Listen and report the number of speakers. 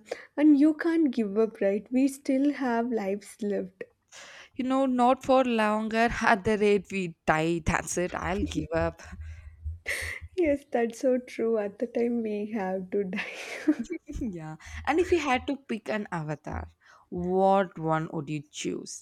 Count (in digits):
2